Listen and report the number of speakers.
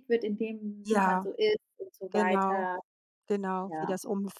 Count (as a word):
two